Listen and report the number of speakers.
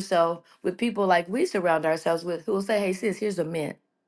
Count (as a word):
one